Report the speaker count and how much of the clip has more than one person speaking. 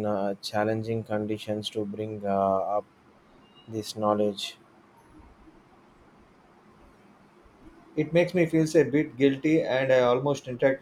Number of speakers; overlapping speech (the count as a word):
two, no overlap